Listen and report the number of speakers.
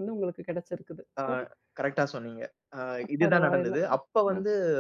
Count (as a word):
two